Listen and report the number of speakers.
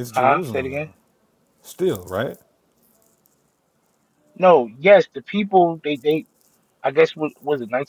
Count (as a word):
two